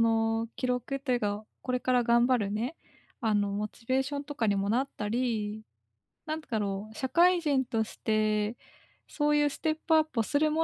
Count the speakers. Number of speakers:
one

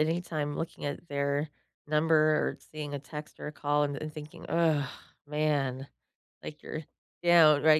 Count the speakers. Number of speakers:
one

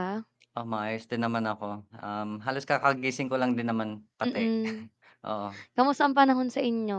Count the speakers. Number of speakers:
two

